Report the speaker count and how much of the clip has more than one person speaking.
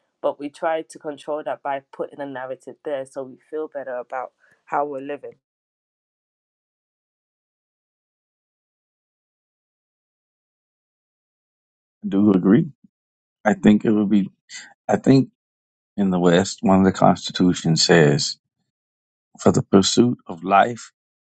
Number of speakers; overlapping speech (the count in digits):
2, no overlap